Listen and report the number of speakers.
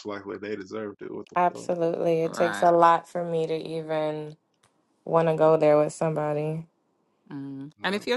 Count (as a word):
three